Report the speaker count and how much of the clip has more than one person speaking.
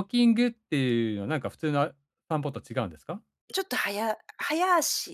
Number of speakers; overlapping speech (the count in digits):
2, no overlap